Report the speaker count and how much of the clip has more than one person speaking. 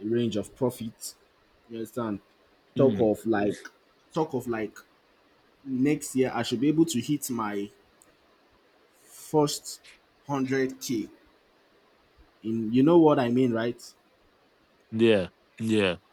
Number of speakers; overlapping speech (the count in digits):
2, about 2%